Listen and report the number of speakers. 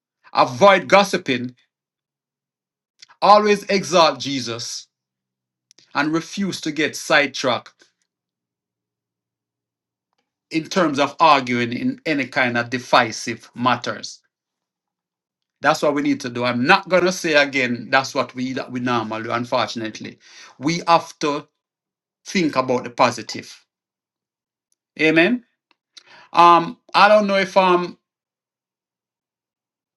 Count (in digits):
1